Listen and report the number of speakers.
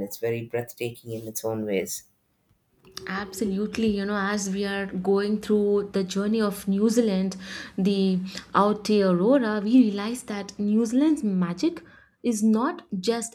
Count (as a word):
two